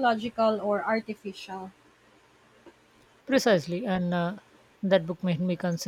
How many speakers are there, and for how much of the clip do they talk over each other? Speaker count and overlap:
2, no overlap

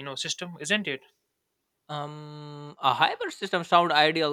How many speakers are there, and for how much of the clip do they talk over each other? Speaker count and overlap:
2, no overlap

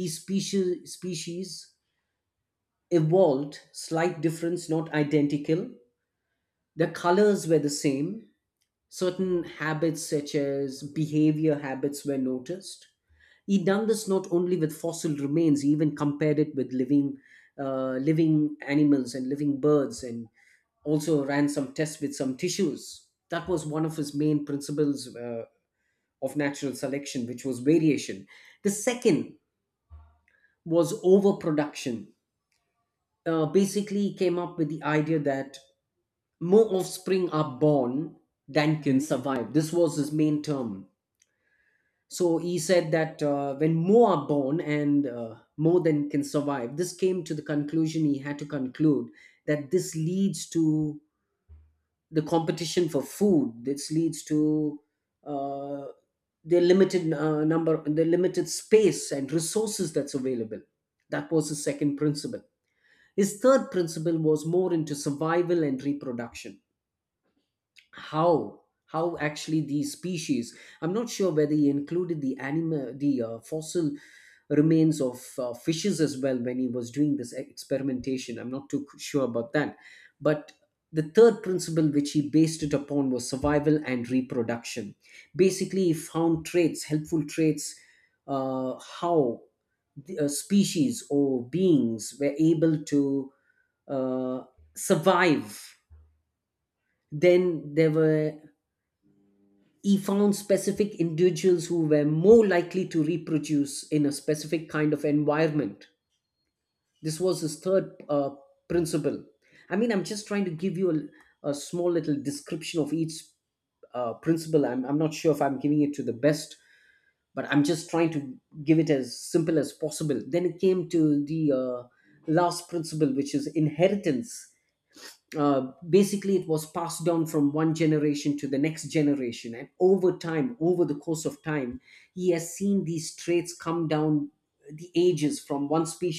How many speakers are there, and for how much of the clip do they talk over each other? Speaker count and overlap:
1, no overlap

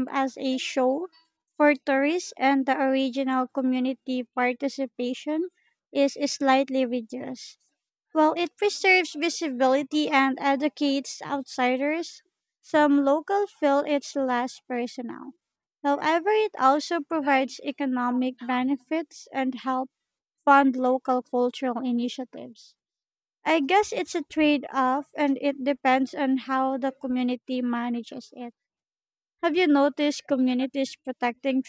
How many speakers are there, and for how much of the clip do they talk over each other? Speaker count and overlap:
1, no overlap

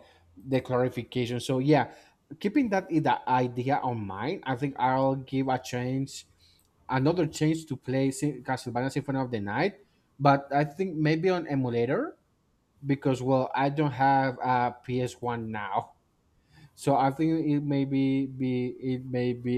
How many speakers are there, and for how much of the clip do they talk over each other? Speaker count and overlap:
1, no overlap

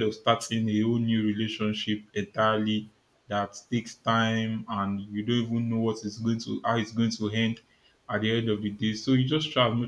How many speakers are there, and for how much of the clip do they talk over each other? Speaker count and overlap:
1, no overlap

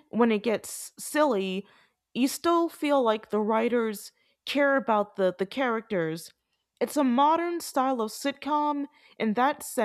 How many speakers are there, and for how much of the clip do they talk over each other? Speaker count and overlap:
1, no overlap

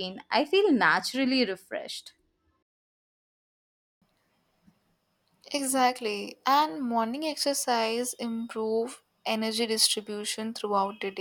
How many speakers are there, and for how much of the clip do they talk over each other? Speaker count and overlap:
2, no overlap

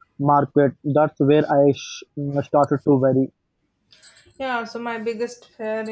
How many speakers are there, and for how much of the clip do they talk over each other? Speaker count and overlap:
2, no overlap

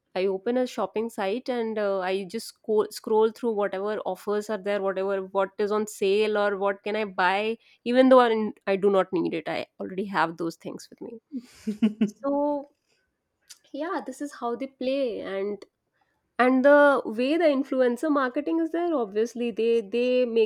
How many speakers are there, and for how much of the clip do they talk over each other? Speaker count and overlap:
1, no overlap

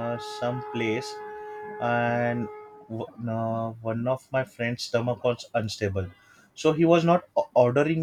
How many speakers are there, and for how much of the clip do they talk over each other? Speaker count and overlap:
1, no overlap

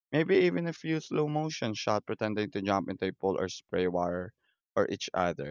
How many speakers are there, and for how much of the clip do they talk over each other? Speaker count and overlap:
1, no overlap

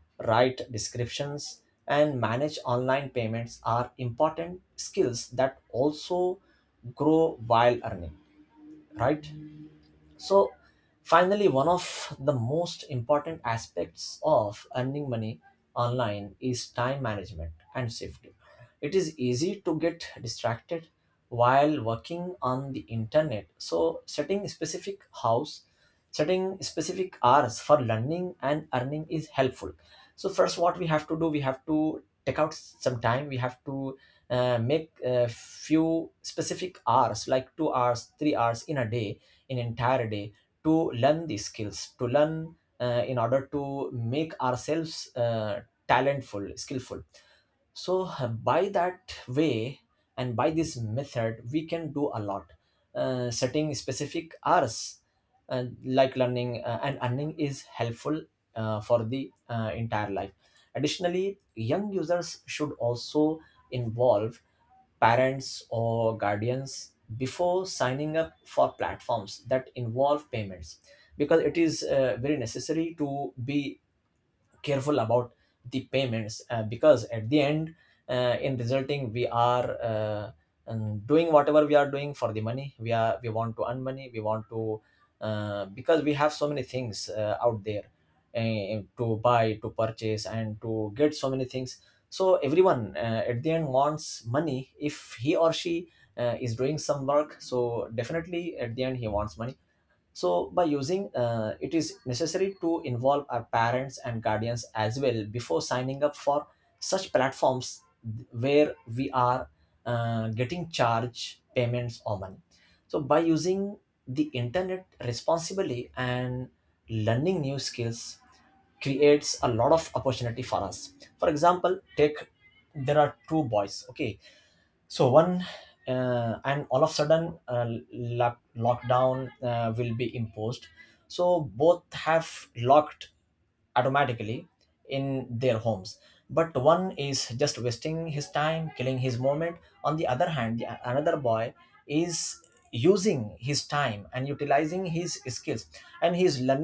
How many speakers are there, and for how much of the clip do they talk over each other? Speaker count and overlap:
1, no overlap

